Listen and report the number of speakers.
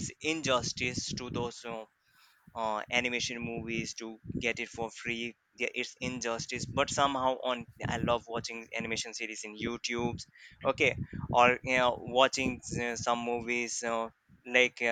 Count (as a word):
one